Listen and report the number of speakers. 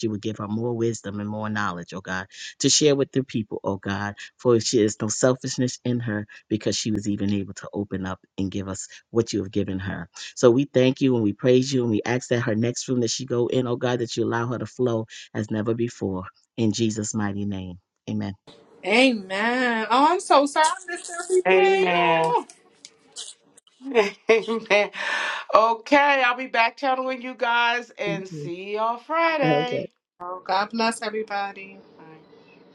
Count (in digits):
3